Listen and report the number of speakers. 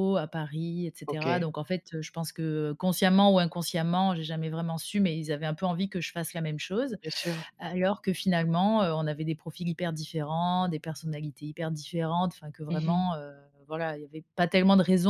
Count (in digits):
2